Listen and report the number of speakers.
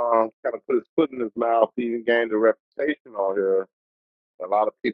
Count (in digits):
1